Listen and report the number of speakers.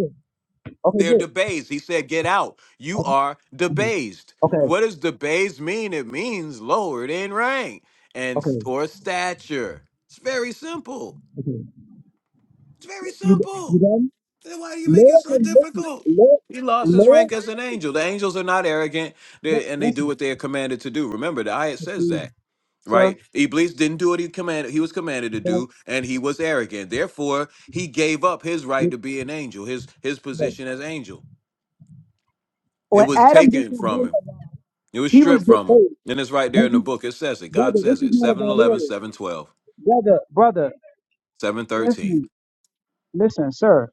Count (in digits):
2